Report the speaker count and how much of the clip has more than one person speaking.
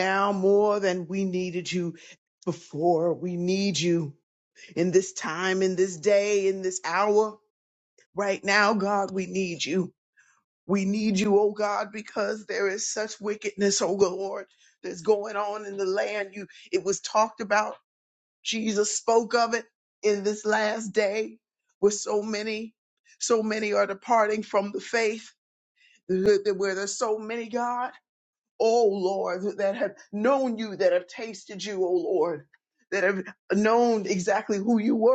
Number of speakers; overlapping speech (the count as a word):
one, no overlap